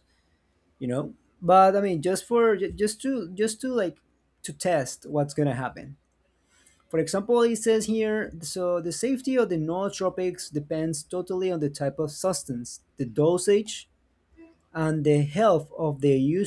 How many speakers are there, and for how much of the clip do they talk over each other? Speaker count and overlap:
one, no overlap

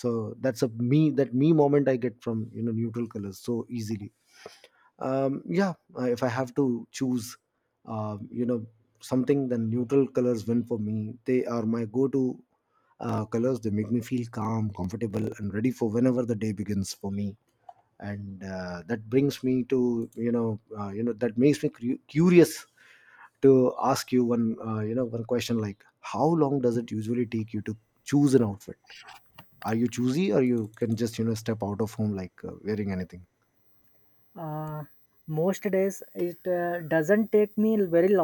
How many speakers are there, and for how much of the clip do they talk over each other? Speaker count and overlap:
two, no overlap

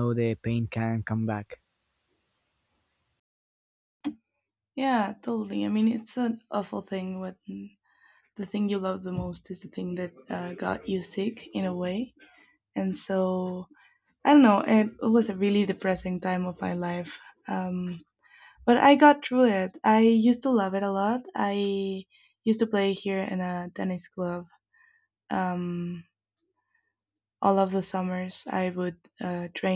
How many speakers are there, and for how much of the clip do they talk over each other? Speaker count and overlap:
two, no overlap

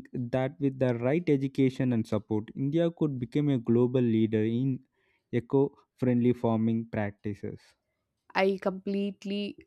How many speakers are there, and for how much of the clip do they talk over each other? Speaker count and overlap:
two, no overlap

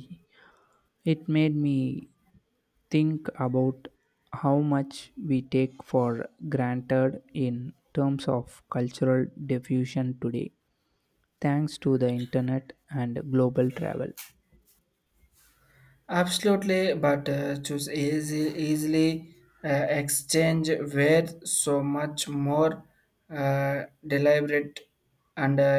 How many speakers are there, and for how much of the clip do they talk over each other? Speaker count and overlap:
two, no overlap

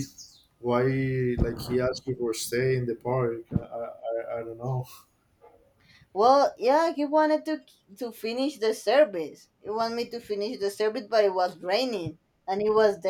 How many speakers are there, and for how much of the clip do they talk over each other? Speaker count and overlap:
two, no overlap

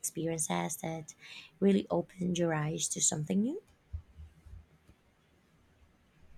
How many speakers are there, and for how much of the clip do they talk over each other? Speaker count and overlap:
one, no overlap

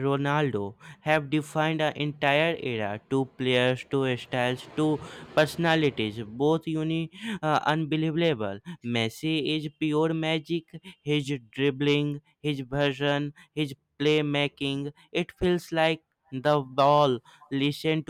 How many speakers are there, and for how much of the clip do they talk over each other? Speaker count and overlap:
one, no overlap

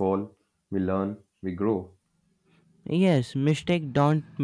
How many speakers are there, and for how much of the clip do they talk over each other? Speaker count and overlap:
two, no overlap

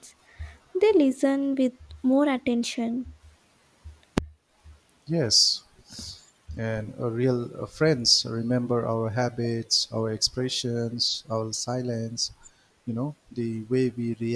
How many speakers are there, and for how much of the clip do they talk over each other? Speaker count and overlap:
two, no overlap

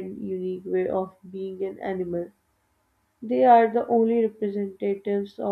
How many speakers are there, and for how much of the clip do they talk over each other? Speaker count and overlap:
one, no overlap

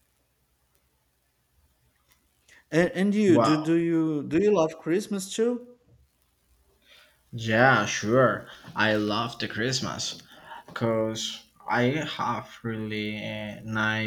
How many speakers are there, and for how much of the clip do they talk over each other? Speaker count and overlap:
two, about 3%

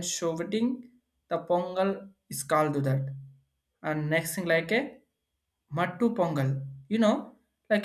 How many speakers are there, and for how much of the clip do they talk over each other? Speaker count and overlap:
one, no overlap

